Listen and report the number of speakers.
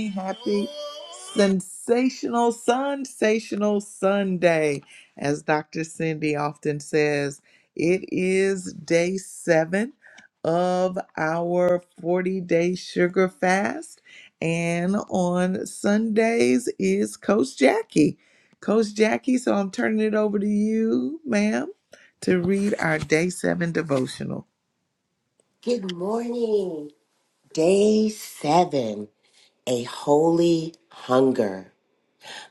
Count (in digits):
2